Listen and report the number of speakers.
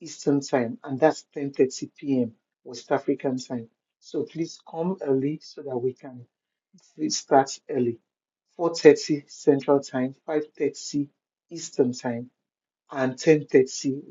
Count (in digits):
1